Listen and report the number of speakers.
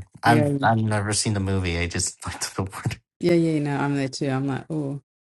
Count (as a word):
two